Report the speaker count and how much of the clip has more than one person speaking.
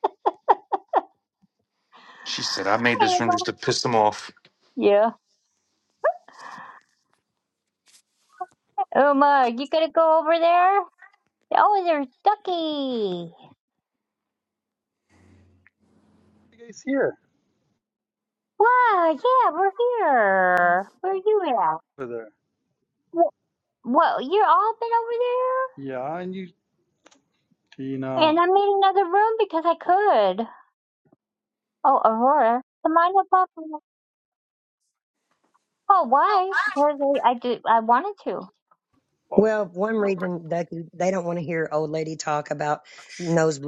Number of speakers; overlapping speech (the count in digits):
4, about 2%